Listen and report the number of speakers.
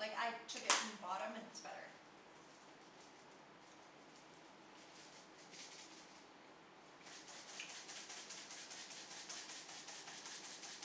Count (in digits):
1